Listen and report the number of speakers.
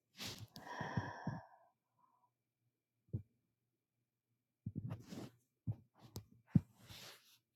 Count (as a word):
zero